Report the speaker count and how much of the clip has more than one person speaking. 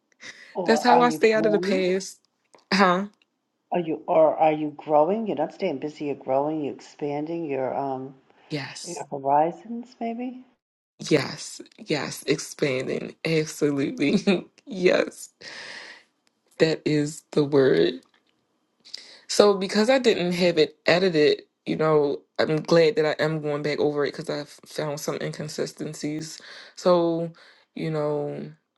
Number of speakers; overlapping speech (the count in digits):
2, about 4%